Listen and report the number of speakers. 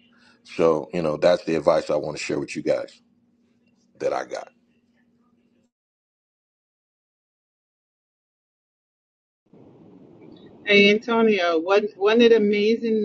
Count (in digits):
2